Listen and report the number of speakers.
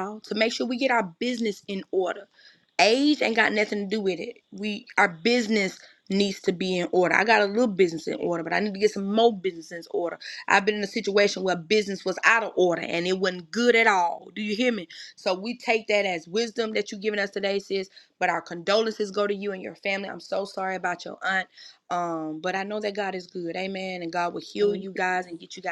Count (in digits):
1